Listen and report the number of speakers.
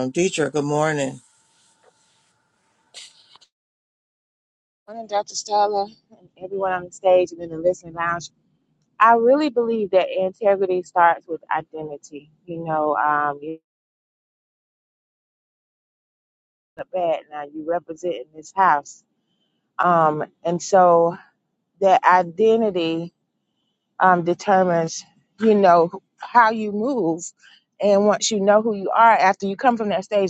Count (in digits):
2